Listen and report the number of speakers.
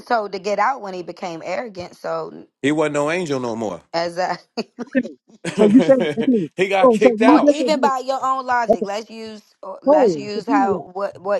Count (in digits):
3